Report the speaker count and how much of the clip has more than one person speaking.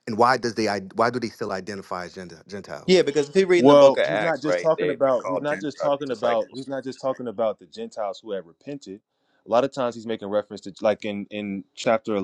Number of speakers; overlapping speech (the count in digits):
3, about 24%